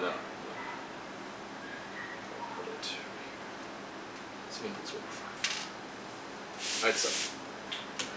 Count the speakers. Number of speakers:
1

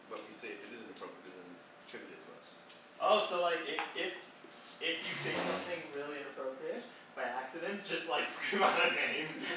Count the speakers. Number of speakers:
2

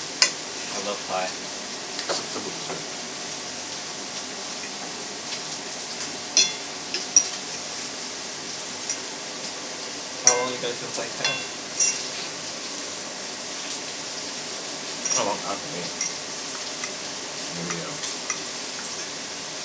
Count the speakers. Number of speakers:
2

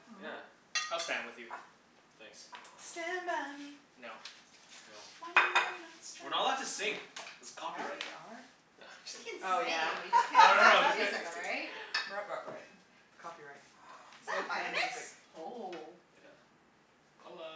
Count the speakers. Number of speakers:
4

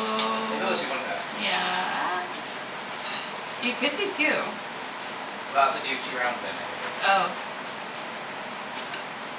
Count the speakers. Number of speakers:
2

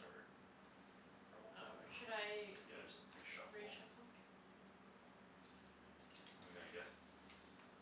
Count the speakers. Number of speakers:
2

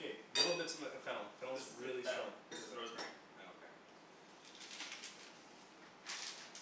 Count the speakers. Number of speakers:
2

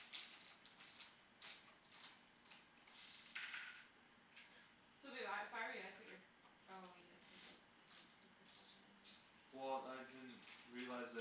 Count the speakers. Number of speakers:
2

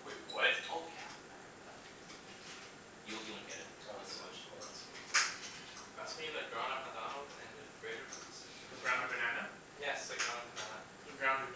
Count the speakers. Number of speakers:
4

